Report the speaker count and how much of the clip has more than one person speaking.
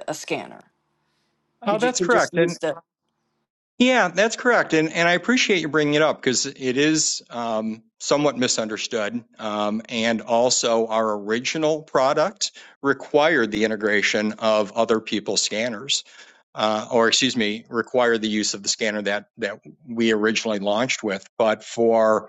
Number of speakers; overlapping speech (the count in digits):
2, about 4%